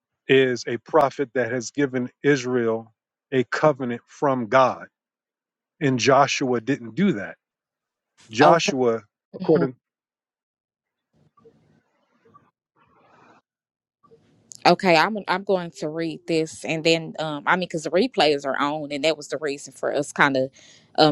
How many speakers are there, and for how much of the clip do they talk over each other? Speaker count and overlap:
two, about 2%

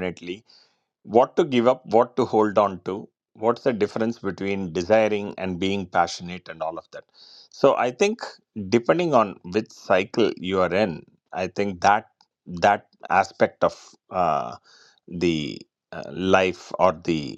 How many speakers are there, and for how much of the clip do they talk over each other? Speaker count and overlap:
one, no overlap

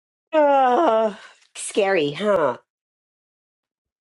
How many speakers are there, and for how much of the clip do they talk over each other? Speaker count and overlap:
one, no overlap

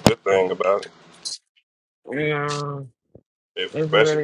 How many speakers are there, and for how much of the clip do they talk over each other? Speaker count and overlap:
two, about 12%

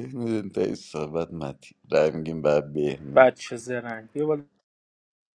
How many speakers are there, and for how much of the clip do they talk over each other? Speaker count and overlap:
two, about 1%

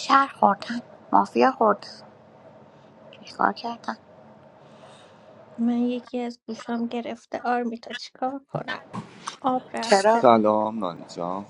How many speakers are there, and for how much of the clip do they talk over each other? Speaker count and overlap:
three, about 4%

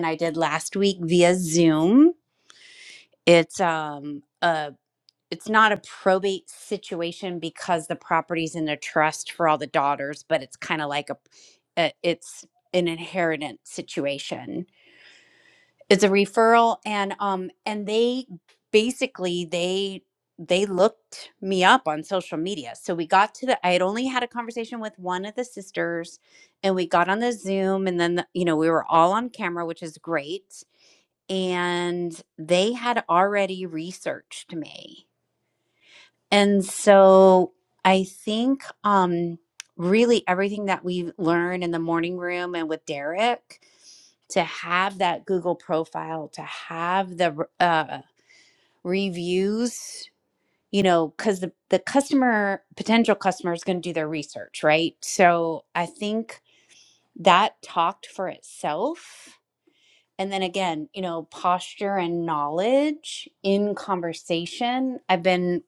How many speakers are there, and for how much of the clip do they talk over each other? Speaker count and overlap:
one, no overlap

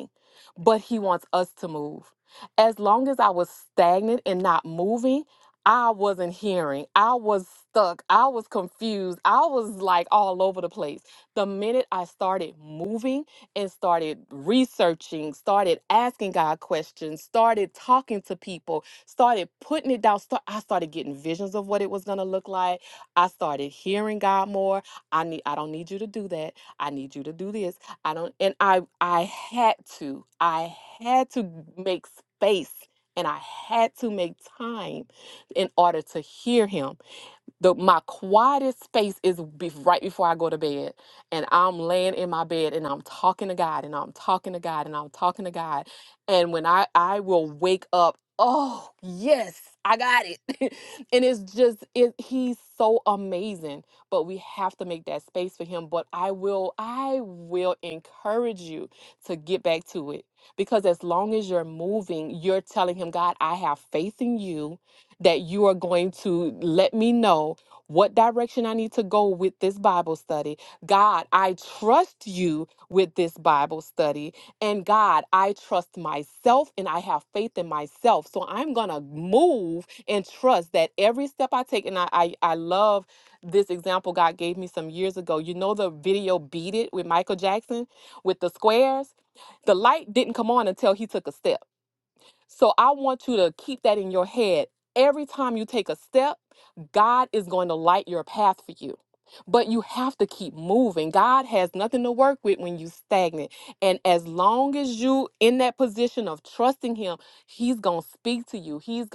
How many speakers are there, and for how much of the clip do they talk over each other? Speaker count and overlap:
one, no overlap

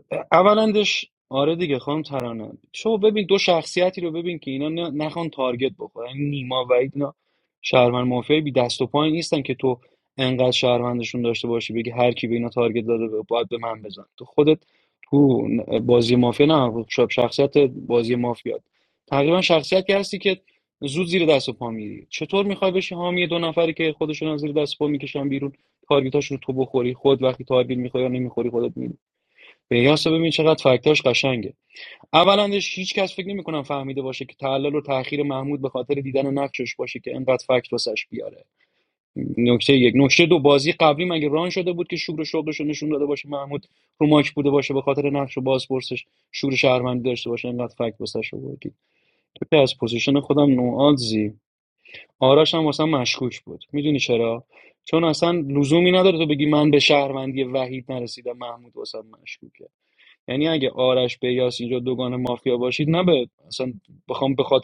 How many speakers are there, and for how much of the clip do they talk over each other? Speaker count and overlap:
one, no overlap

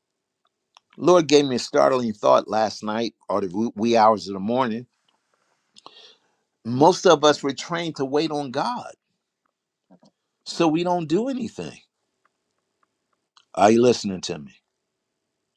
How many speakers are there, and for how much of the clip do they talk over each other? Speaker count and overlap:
one, no overlap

